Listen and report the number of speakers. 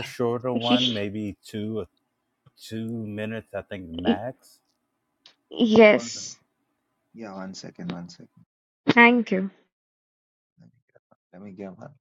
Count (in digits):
3